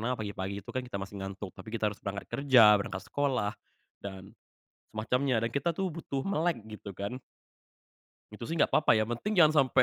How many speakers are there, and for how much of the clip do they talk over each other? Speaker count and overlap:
1, no overlap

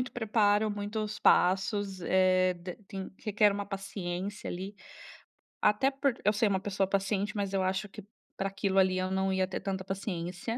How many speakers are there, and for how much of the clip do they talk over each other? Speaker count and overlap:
1, no overlap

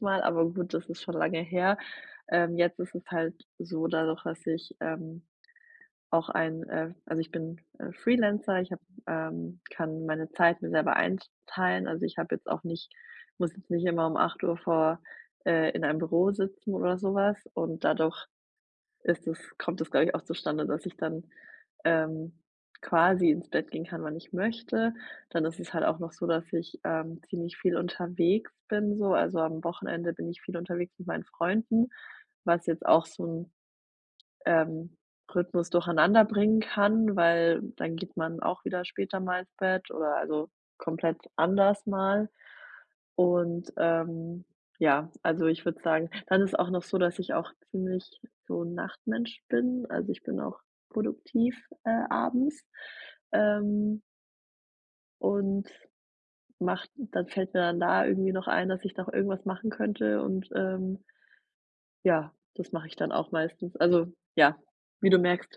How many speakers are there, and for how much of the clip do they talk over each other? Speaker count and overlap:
1, no overlap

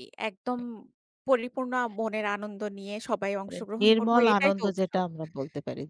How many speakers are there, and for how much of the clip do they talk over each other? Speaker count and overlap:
2, about 26%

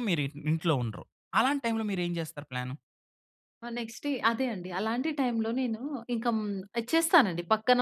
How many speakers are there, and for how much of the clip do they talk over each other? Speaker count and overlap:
2, no overlap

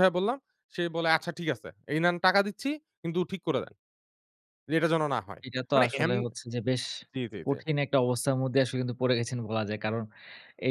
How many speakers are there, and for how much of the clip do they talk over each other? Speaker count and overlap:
2, about 6%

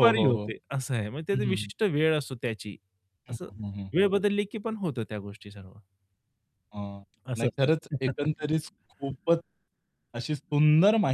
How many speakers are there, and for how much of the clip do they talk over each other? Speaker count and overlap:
2, about 11%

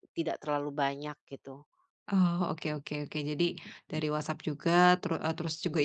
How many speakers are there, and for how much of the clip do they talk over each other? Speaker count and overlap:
2, no overlap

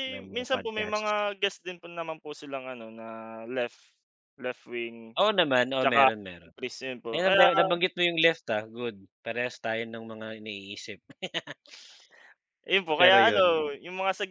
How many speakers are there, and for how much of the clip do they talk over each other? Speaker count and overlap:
2, about 16%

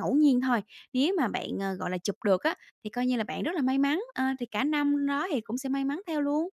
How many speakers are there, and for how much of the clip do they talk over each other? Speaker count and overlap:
1, no overlap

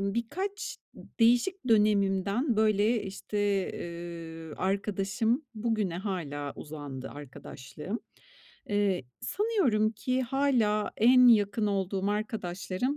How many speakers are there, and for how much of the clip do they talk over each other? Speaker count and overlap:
1, no overlap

